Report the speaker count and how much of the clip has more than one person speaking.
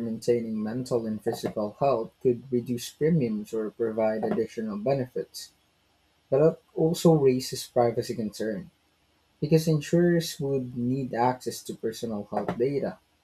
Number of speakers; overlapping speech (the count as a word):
one, no overlap